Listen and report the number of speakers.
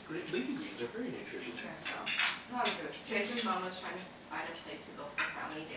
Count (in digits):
3